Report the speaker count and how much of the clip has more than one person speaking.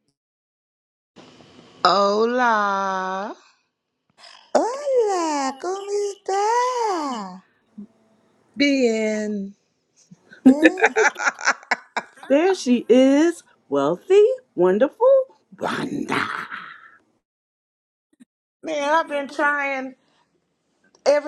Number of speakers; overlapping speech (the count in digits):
3, no overlap